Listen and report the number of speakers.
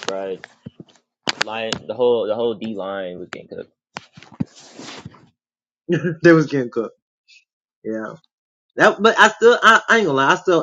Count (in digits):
2